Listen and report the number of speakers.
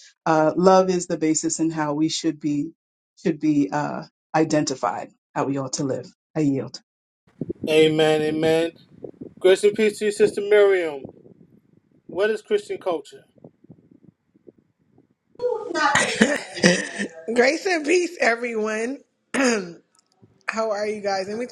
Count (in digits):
3